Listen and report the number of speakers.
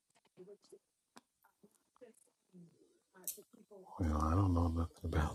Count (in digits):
1